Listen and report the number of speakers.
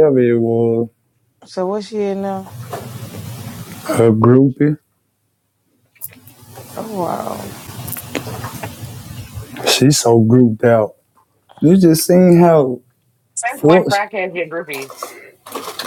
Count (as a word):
three